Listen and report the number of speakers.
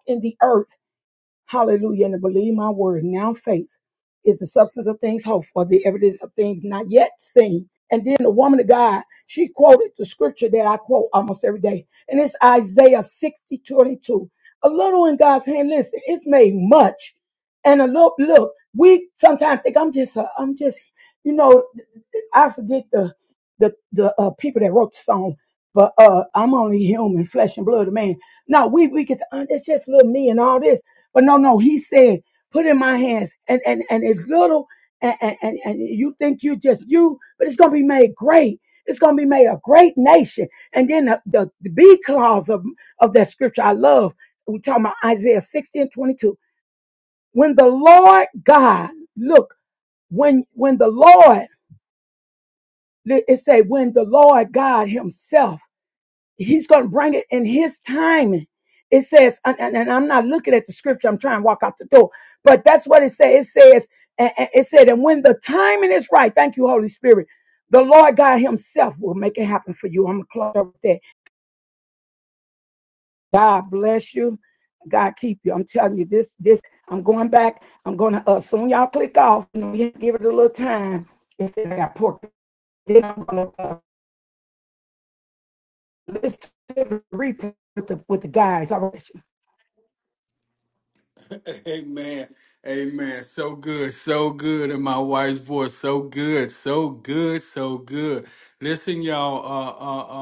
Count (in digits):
2